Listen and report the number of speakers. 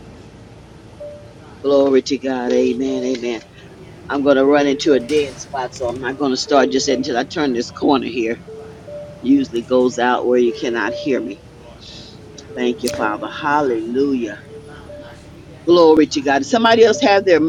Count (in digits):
1